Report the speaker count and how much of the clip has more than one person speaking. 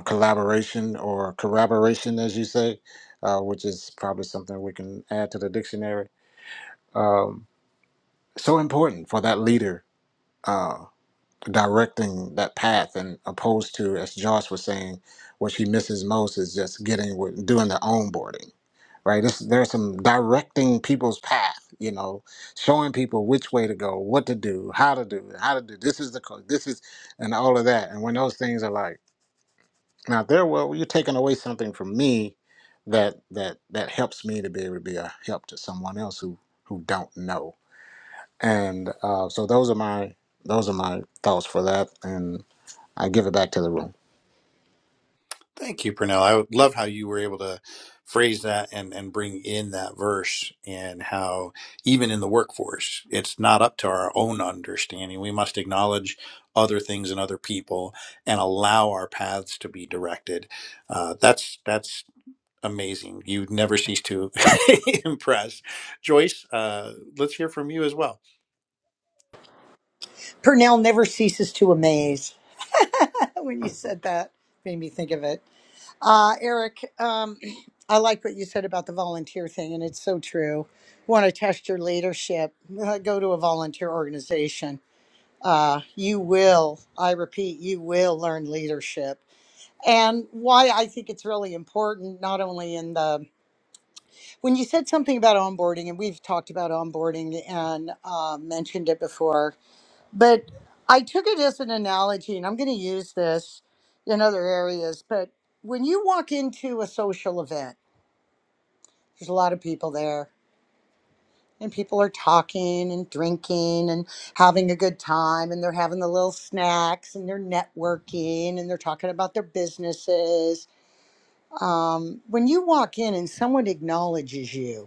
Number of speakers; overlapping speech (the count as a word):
three, no overlap